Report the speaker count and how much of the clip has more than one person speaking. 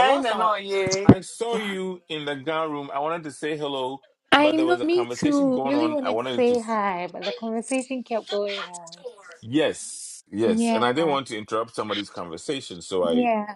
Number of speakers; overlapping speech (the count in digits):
3, about 25%